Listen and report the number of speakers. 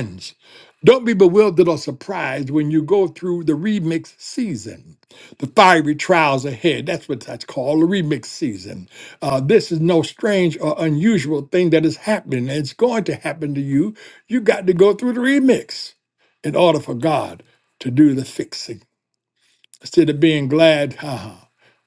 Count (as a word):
one